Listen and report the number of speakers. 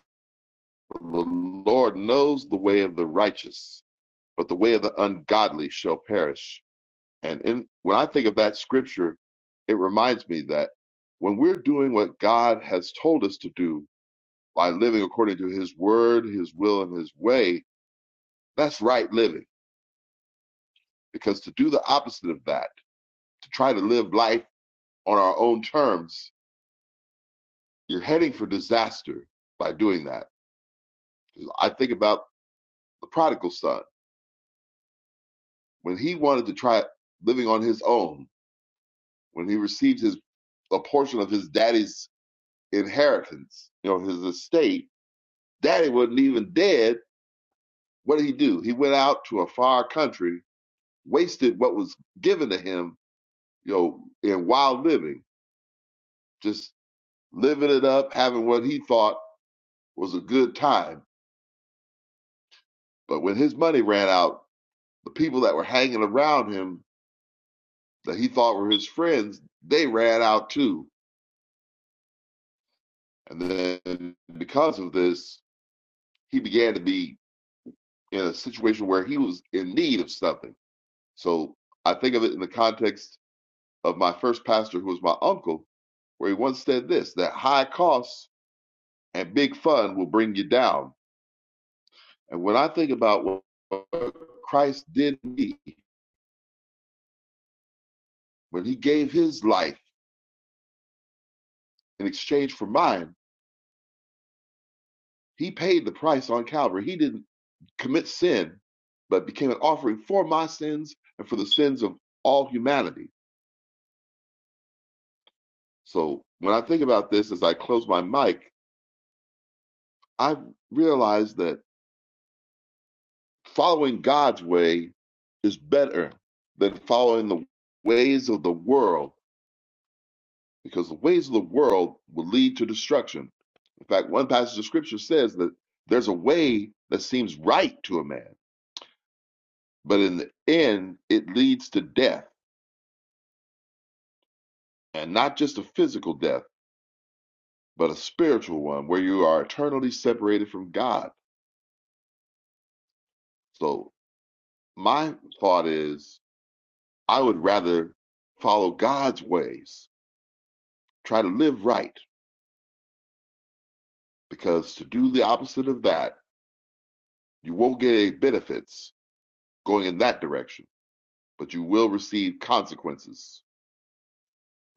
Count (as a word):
one